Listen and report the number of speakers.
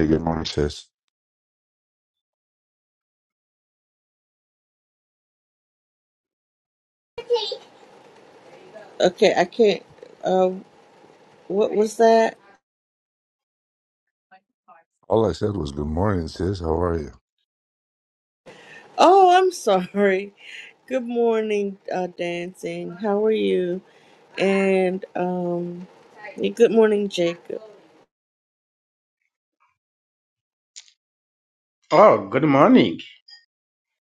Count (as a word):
three